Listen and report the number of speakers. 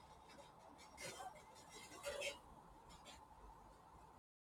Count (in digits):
0